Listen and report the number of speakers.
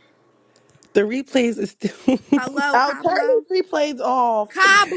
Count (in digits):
3